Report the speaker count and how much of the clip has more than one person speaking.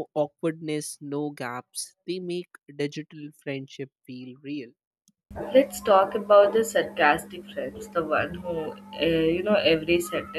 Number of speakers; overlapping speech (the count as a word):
two, no overlap